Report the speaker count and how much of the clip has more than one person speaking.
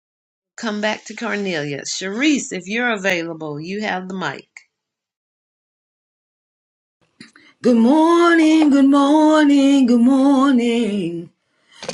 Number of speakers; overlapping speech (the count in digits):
2, no overlap